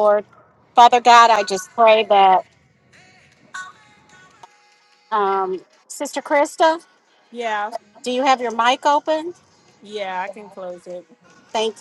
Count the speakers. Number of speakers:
two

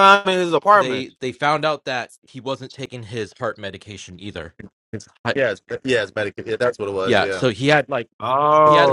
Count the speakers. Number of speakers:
three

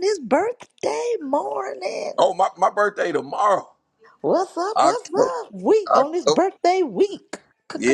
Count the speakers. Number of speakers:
two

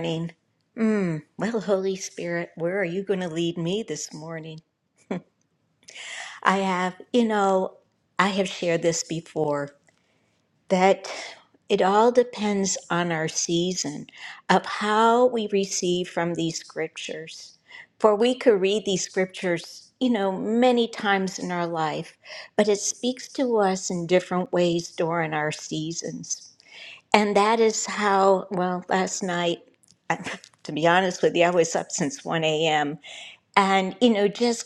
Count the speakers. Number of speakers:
one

